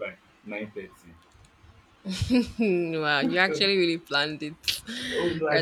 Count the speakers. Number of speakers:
2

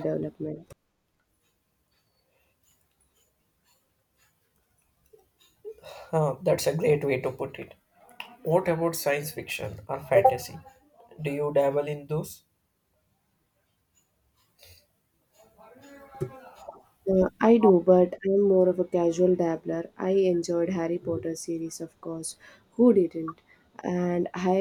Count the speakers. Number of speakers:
2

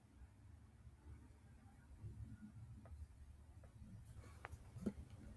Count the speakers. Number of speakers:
0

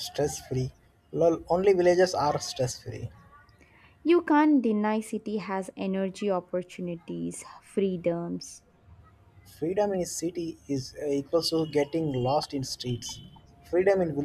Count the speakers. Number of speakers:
2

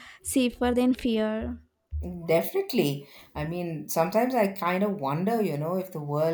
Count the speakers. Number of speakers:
2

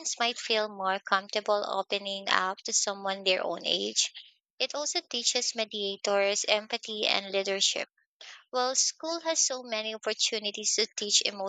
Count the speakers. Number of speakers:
1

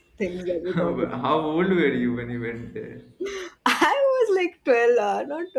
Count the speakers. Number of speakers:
2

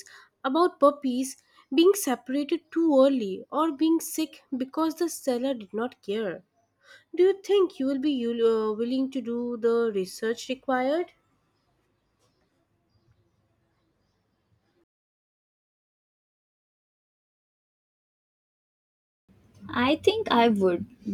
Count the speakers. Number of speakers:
2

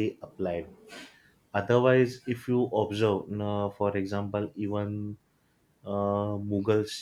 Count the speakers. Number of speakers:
1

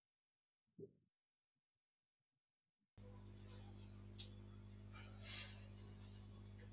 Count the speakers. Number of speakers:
0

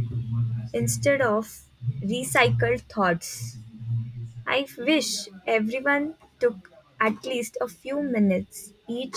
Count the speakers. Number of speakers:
1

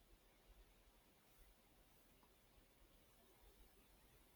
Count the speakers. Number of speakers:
0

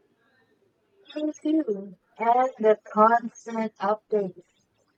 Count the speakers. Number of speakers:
1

